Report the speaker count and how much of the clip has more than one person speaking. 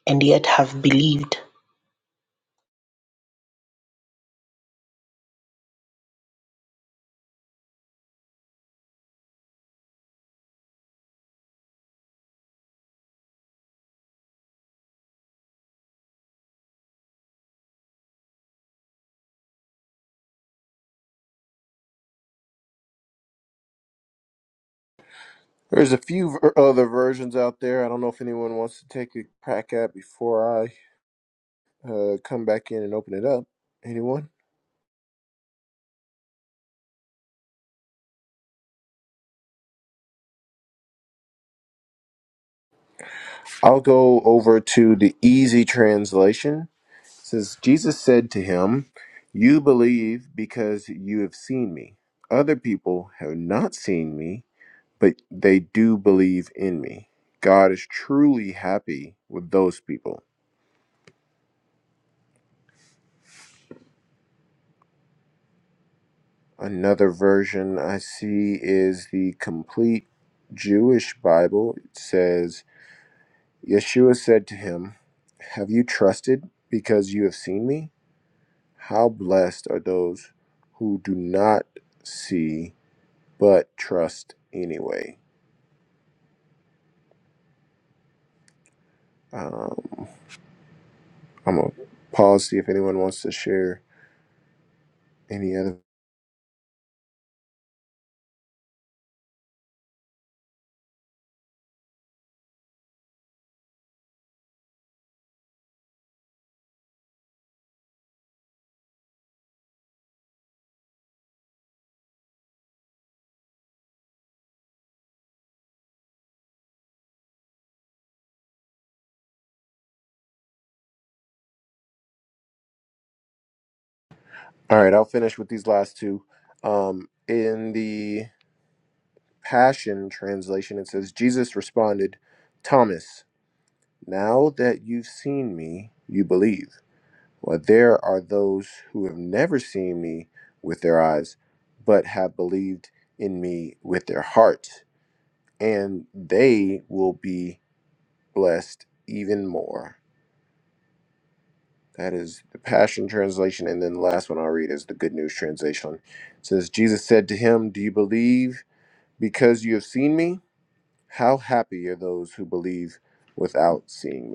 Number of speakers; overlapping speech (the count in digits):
2, no overlap